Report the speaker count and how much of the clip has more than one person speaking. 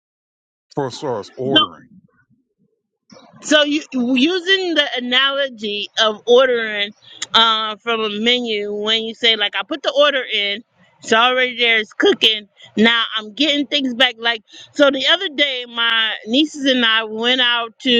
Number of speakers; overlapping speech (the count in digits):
2, no overlap